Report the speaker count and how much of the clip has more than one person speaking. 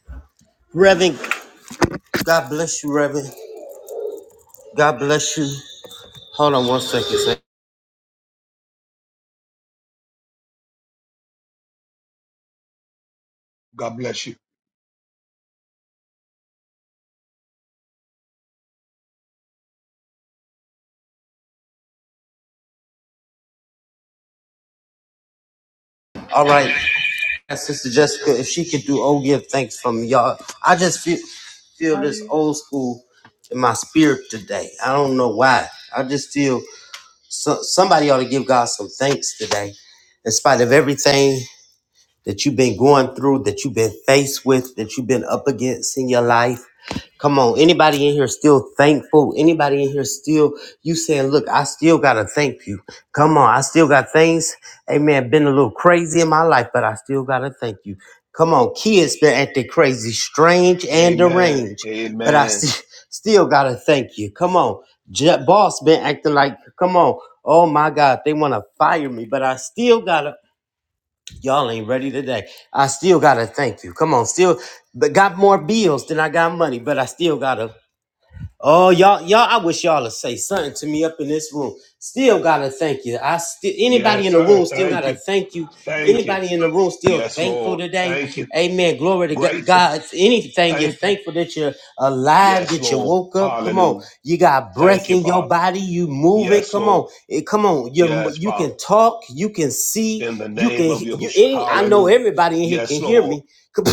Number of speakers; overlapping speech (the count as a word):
two, about 11%